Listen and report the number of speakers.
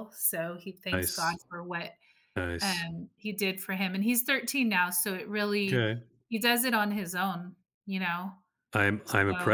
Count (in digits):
2